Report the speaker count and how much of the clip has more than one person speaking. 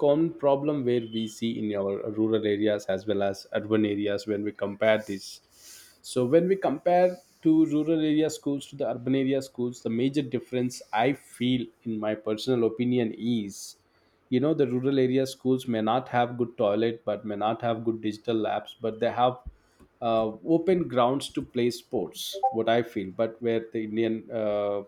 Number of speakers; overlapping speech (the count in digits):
1, no overlap